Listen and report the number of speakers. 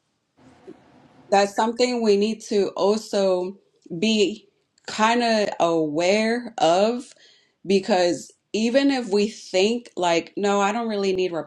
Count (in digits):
1